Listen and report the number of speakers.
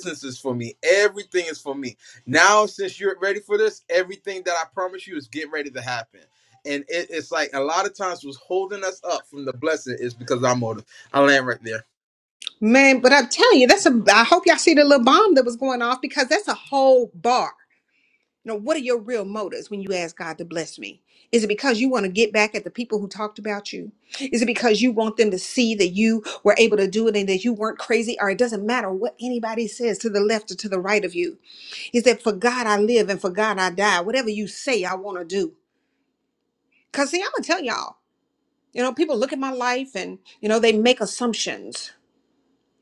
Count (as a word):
two